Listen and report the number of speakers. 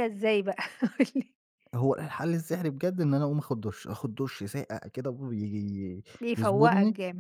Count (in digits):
2